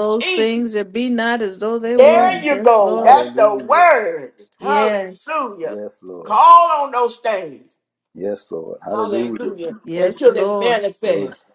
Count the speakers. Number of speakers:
three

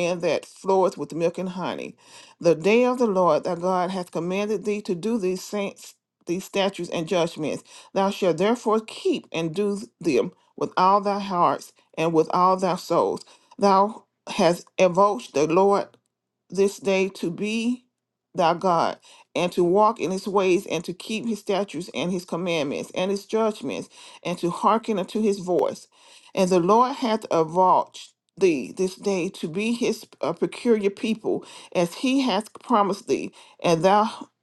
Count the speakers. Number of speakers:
one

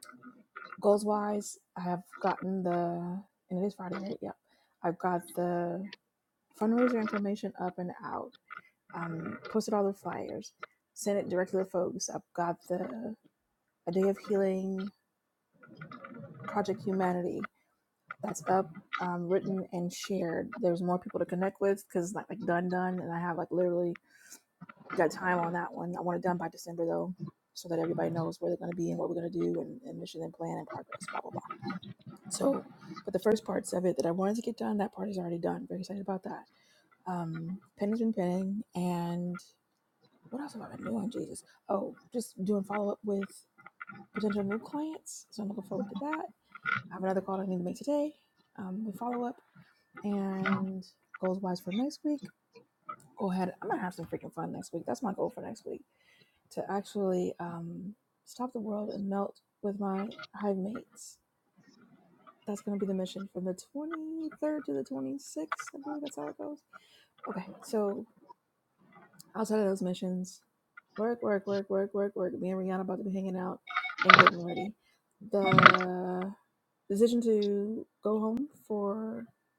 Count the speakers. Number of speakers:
one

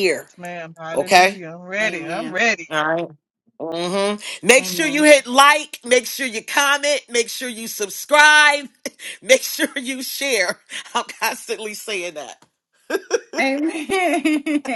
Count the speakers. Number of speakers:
three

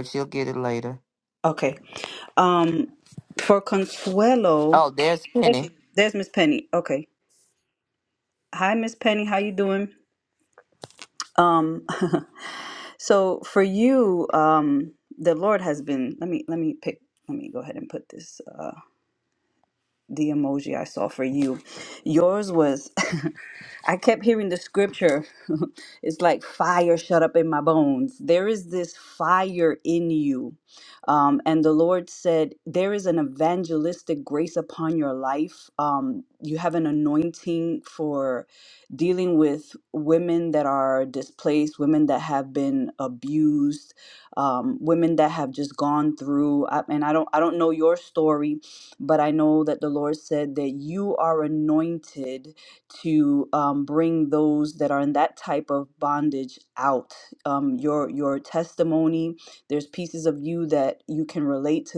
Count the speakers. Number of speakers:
two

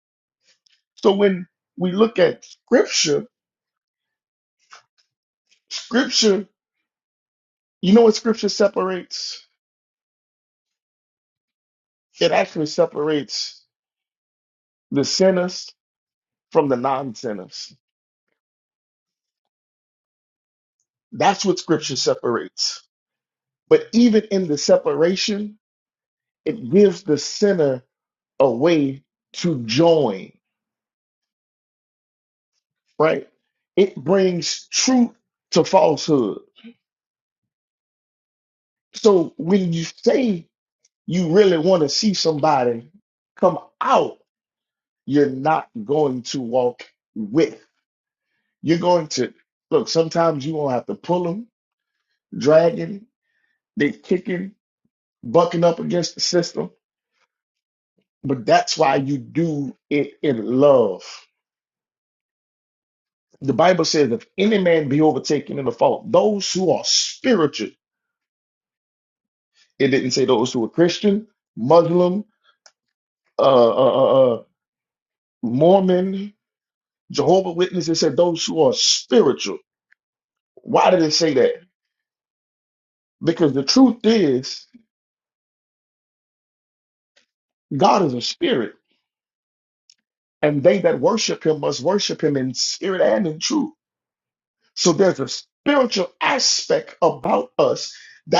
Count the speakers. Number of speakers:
one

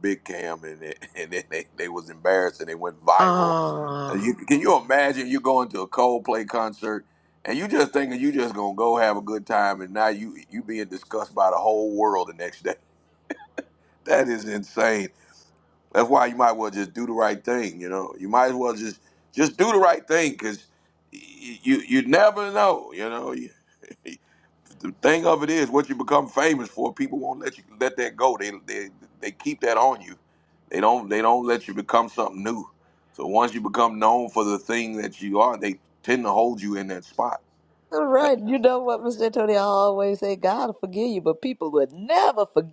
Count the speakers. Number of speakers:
three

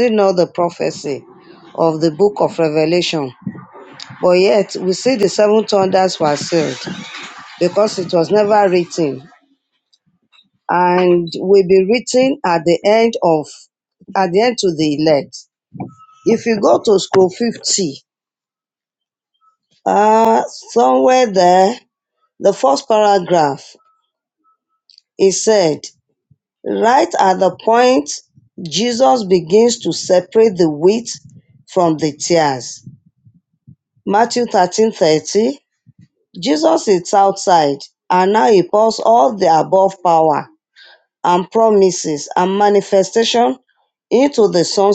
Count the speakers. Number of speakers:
one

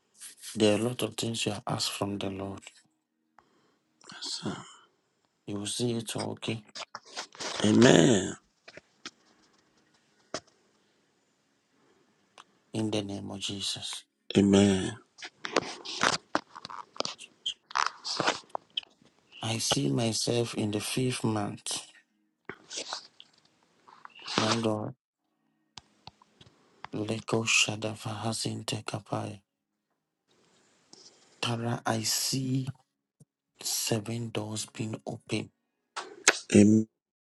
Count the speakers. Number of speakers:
two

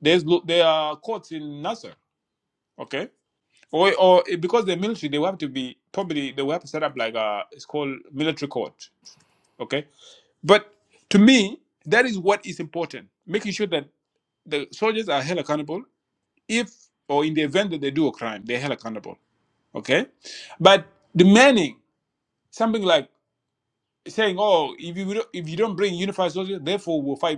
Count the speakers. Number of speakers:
one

